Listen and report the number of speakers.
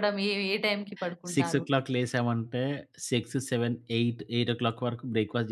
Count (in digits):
2